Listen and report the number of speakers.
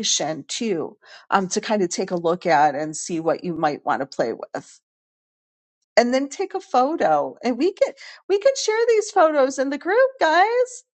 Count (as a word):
one